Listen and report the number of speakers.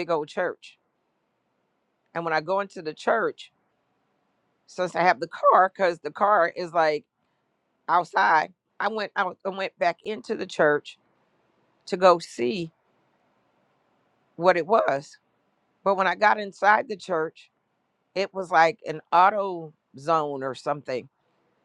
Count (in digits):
1